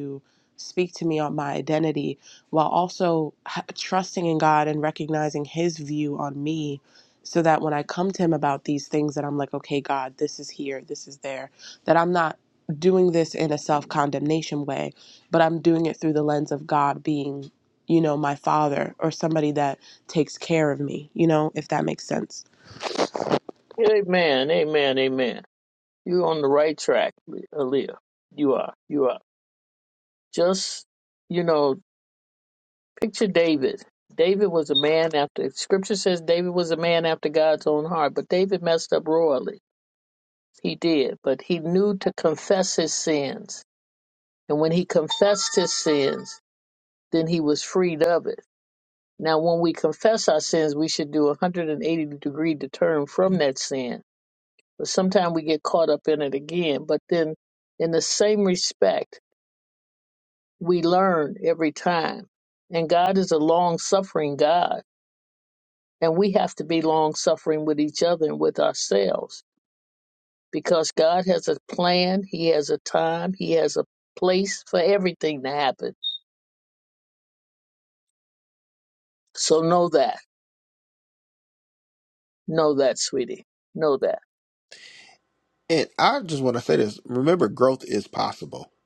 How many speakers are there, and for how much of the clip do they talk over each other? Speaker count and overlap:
three, no overlap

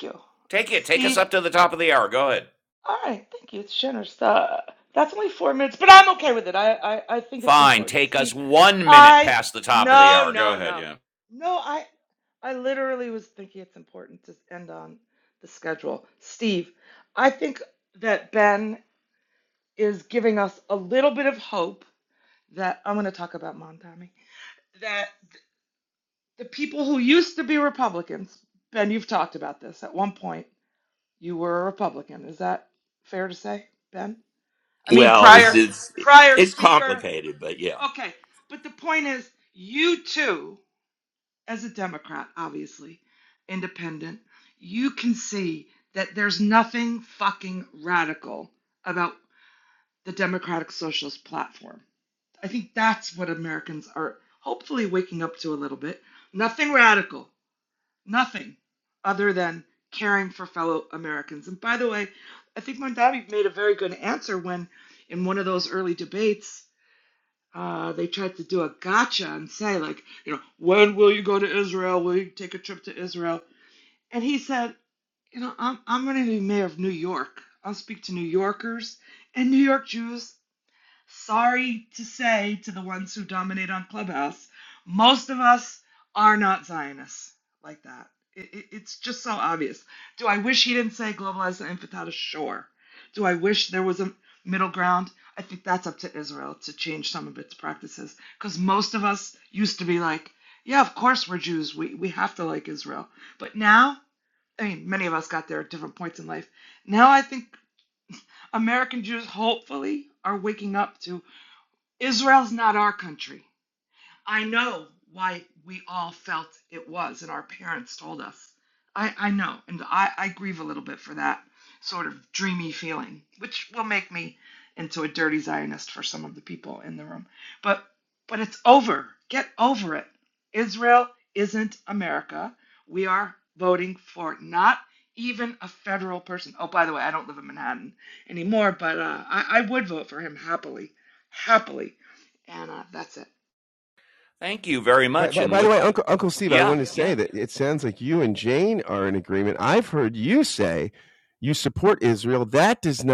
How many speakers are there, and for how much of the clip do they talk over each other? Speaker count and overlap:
four, about 4%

